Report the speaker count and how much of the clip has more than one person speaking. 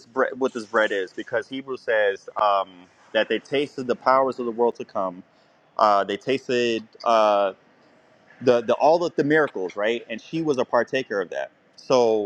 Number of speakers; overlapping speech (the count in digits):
1, no overlap